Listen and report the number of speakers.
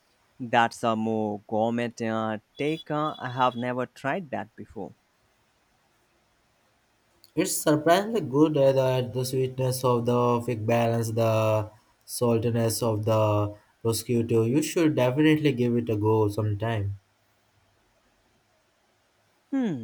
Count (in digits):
2